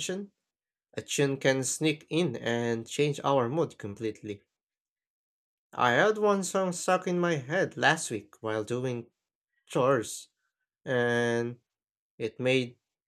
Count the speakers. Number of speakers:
1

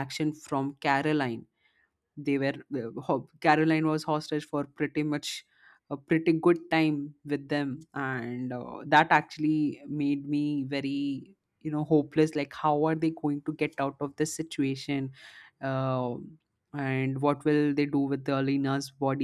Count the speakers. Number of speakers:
1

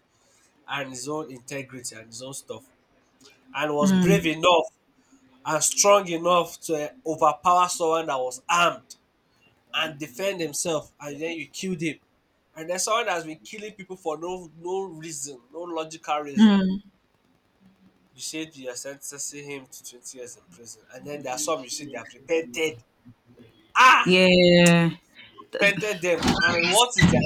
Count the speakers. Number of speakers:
2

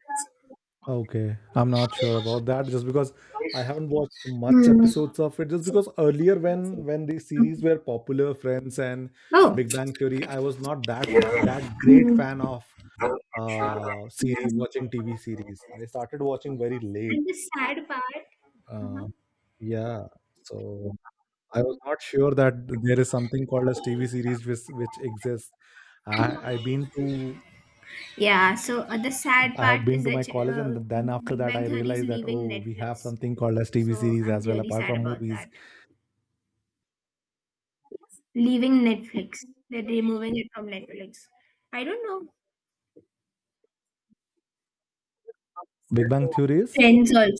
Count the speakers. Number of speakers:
2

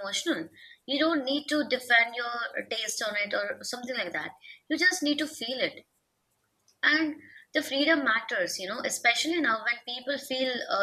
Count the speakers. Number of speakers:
1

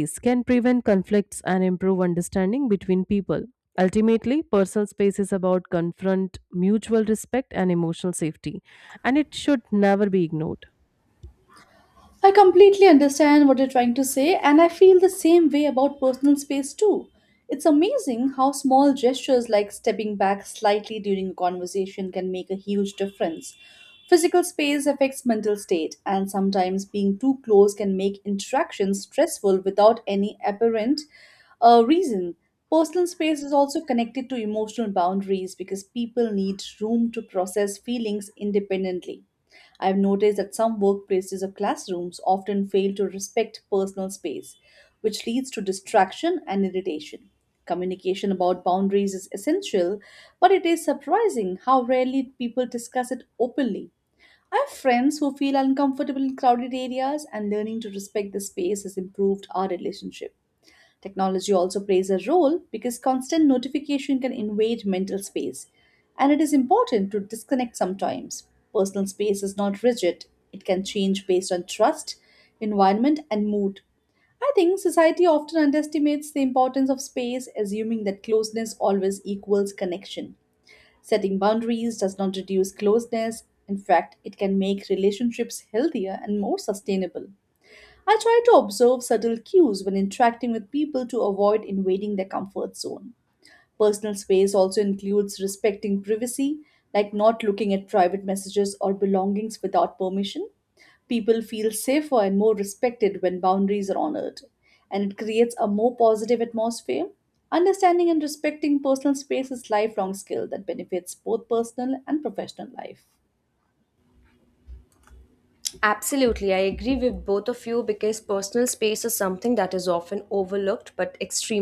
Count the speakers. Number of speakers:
3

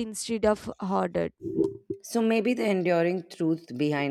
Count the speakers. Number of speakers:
2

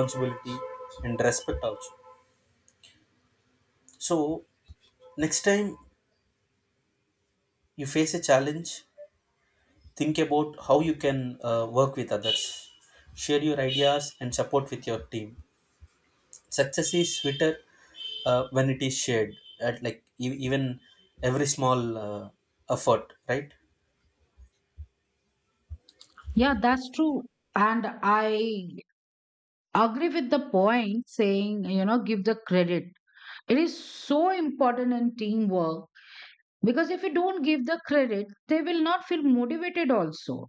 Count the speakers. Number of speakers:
2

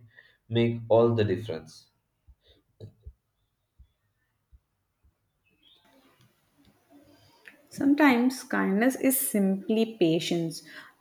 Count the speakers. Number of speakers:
2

